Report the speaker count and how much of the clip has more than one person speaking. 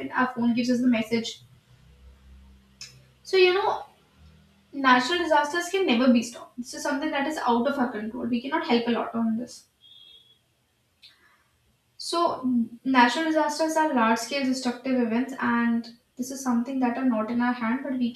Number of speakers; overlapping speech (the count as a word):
one, no overlap